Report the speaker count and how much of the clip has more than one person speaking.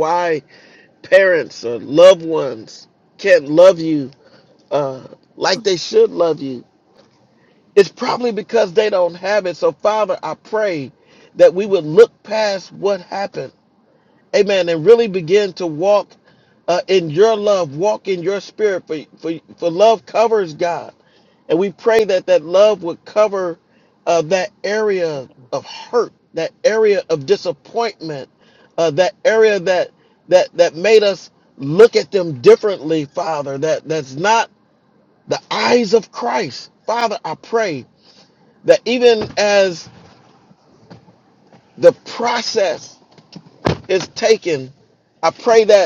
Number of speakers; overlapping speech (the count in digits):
1, no overlap